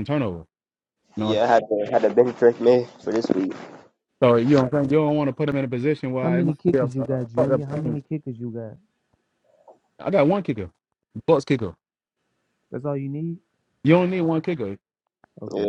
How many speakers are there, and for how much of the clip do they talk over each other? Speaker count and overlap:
3, about 9%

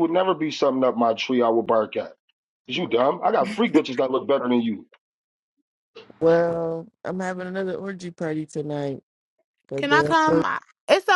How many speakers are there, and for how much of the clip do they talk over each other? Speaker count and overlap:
3, about 6%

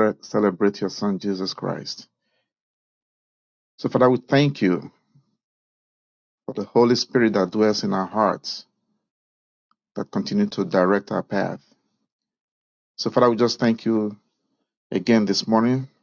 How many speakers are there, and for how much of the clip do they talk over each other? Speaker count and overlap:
1, no overlap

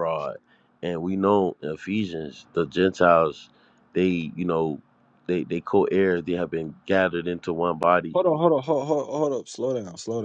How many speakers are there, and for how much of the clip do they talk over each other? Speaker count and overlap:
2, no overlap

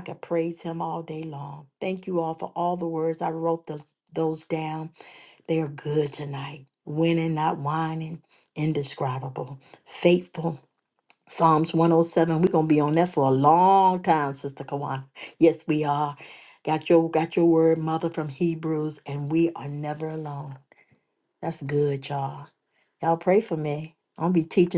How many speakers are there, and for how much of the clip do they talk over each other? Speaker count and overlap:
1, no overlap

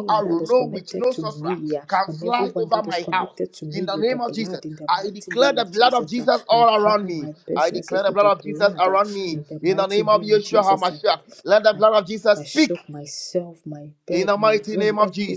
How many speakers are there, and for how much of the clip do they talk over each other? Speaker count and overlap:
2, about 76%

